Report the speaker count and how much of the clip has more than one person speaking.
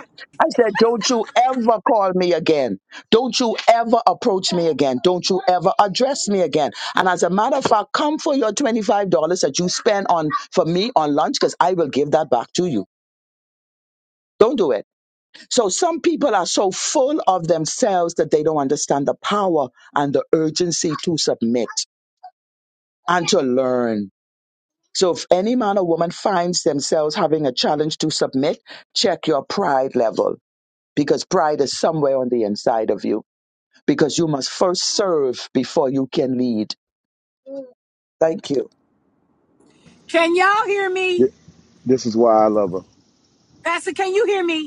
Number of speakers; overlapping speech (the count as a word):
three, under 1%